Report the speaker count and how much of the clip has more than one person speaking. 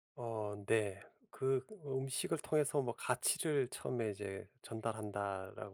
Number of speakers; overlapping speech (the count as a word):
one, no overlap